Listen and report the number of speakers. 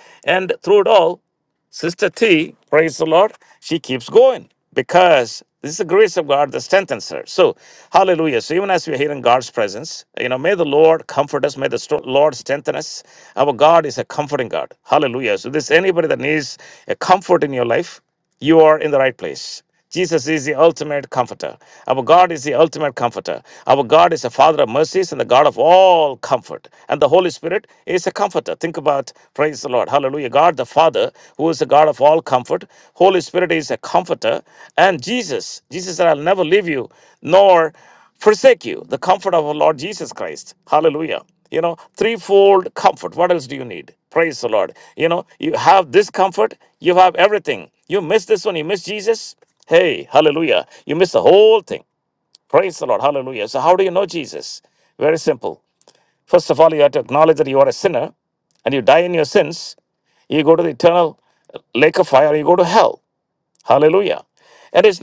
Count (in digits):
1